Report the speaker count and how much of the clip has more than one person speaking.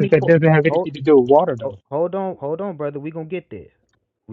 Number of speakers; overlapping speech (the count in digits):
2, about 14%